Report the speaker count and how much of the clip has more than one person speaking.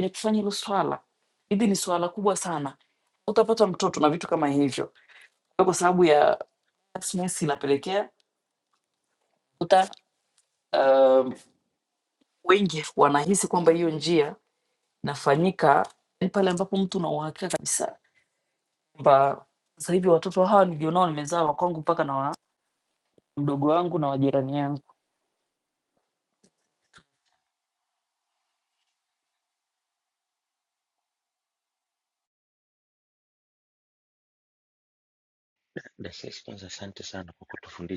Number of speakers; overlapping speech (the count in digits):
2, no overlap